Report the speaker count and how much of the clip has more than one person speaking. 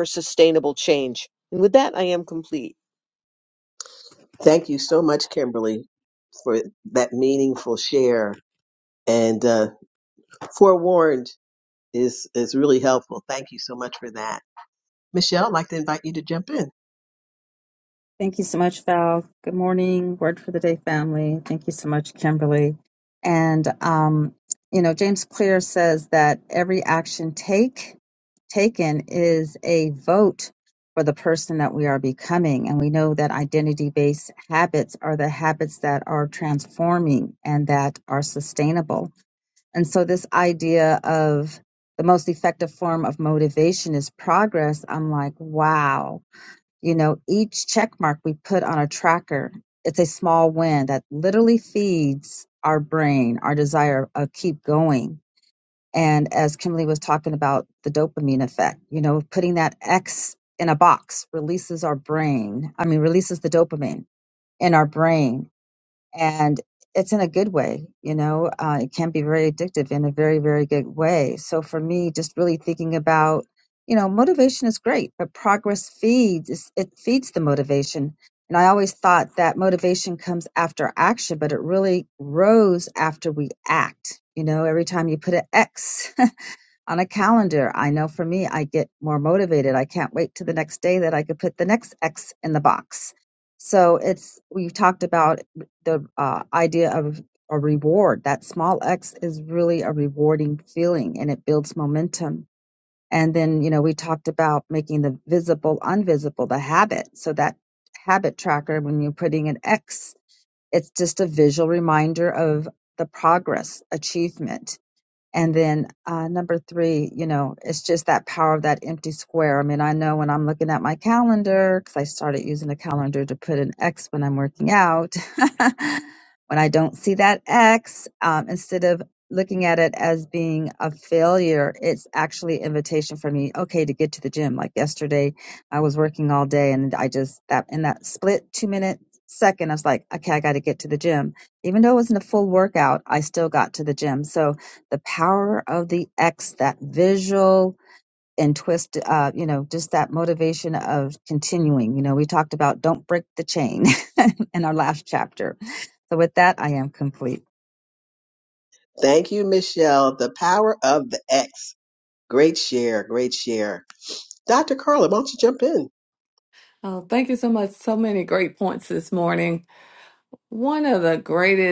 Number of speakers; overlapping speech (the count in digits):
4, no overlap